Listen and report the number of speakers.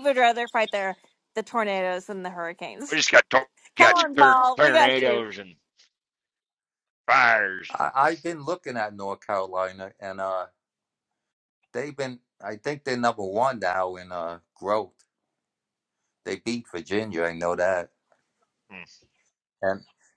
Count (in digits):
3